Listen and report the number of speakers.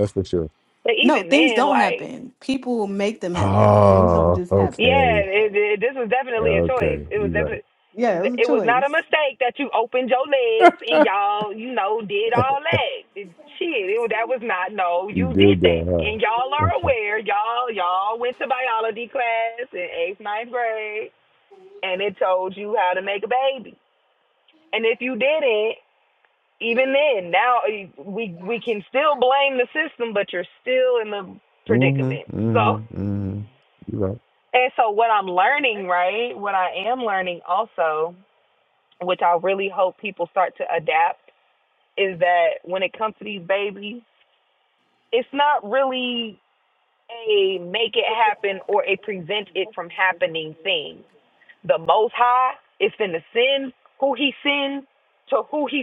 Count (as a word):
three